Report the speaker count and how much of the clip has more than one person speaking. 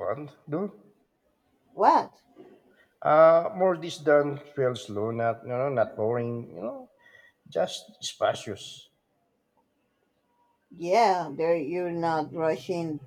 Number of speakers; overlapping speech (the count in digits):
2, no overlap